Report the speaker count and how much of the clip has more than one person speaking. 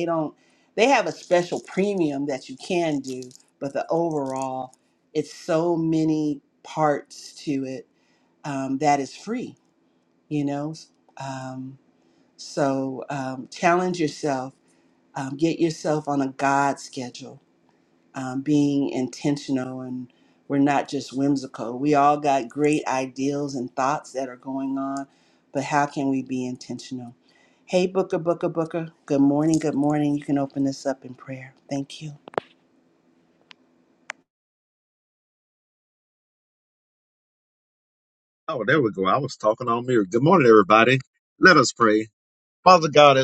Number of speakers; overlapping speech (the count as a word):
two, no overlap